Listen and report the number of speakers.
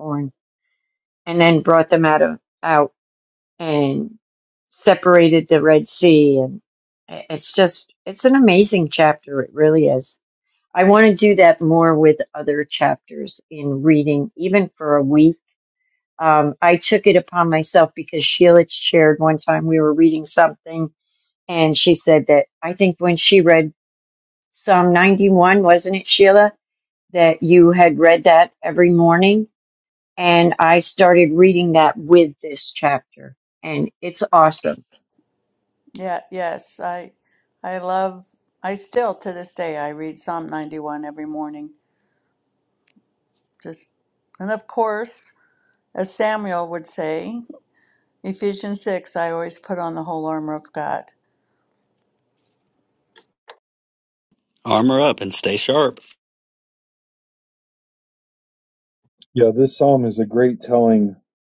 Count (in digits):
4